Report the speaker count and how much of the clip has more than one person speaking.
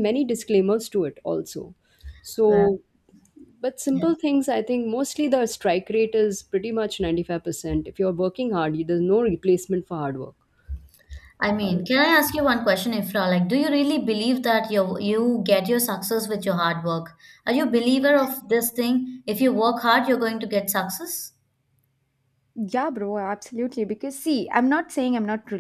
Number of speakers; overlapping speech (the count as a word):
three, about 3%